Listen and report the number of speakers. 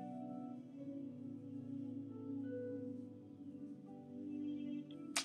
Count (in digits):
0